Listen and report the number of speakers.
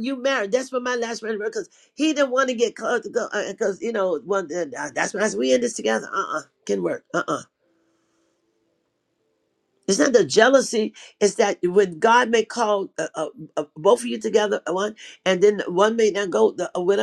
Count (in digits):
1